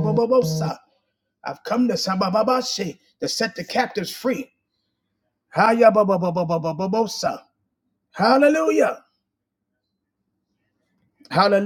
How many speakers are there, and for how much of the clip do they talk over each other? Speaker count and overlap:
1, no overlap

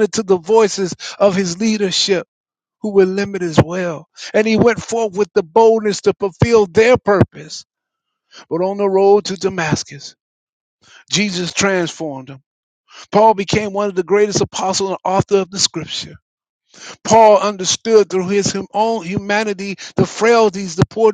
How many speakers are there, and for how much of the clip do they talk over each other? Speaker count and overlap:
1, no overlap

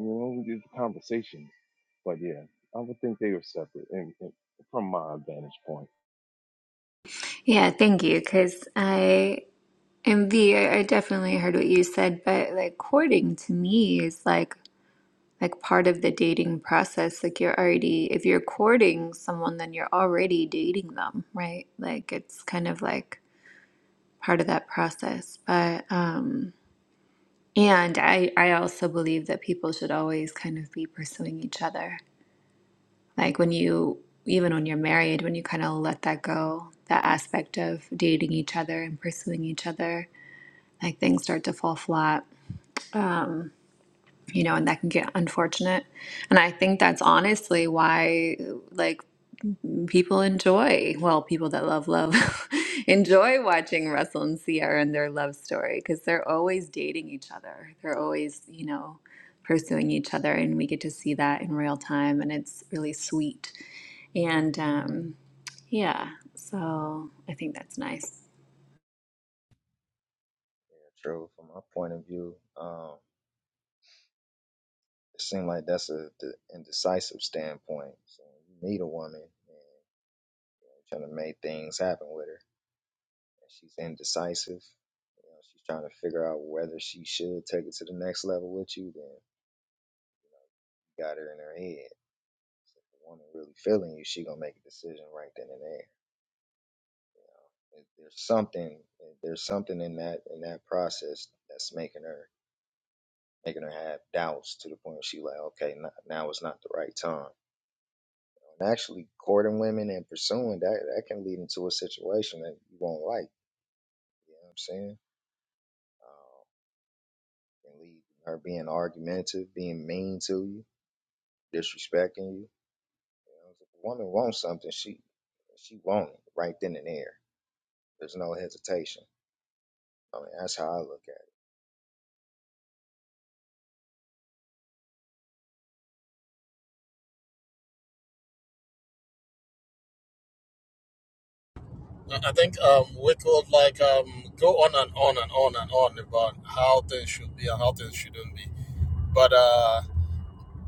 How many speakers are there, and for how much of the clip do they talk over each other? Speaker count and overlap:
4, no overlap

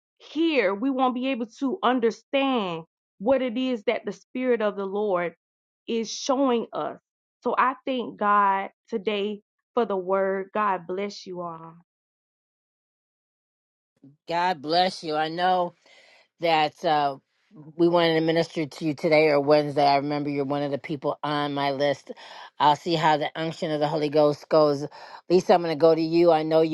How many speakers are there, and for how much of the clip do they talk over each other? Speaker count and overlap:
2, no overlap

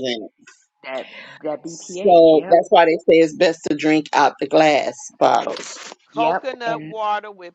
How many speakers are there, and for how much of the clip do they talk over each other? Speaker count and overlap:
3, about 17%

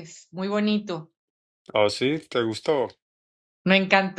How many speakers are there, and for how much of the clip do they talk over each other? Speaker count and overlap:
2, no overlap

